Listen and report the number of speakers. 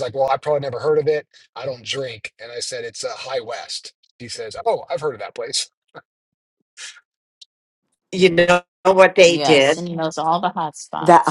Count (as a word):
three